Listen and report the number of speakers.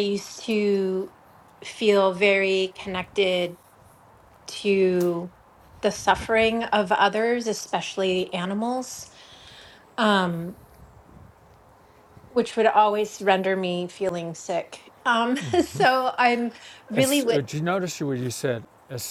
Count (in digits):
2